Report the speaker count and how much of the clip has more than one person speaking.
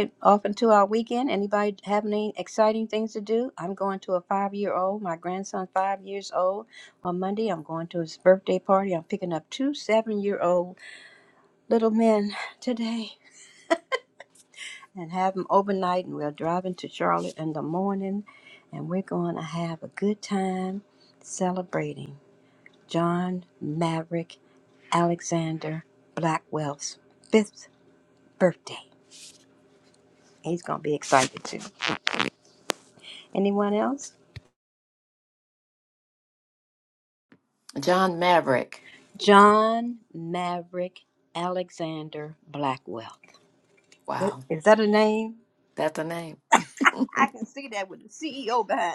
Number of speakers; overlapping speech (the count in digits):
2, no overlap